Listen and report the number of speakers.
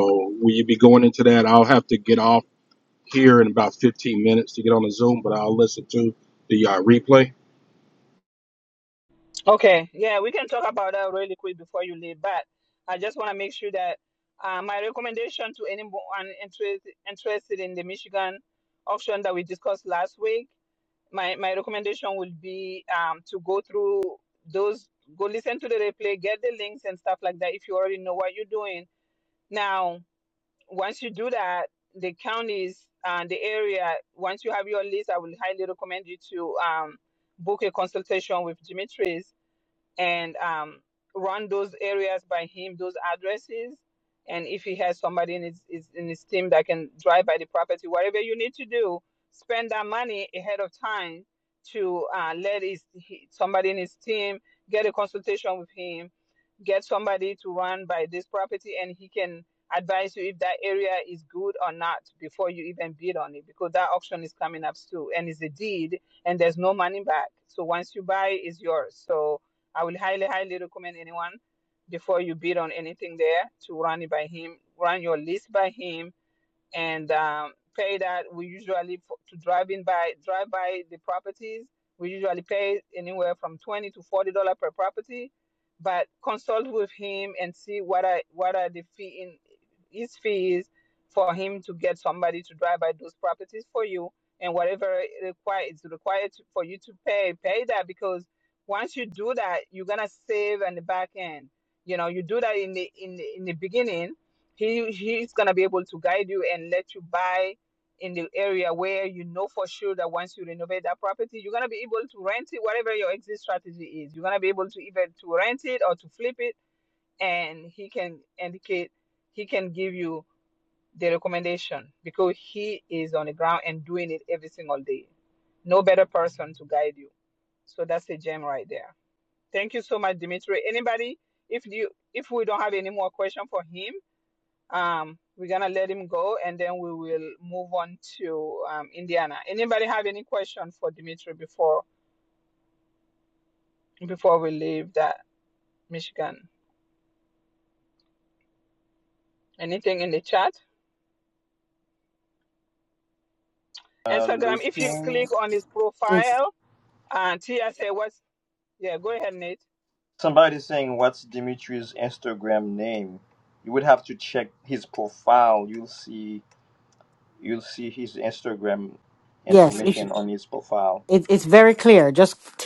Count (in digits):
4